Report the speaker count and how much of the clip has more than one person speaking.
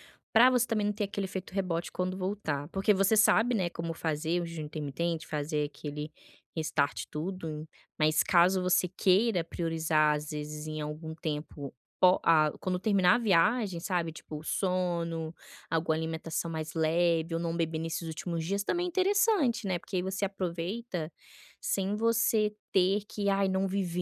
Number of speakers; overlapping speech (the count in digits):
1, no overlap